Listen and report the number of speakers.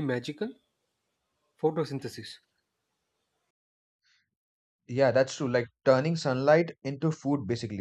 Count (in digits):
2